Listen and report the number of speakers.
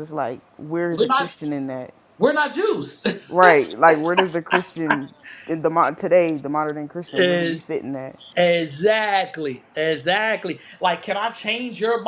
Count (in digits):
2